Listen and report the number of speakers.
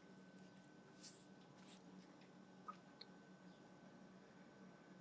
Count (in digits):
0